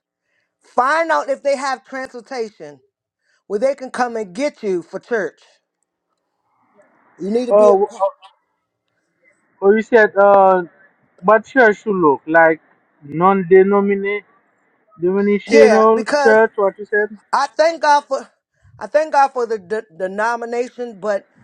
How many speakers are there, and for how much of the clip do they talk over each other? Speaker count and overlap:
two, about 7%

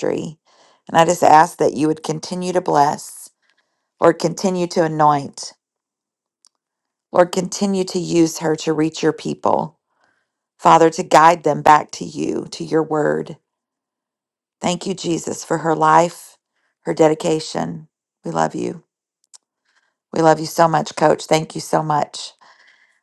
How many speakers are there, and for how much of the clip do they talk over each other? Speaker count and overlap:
one, no overlap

